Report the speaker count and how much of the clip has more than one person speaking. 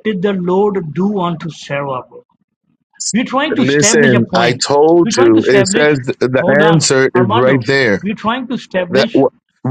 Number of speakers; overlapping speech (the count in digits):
2, about 37%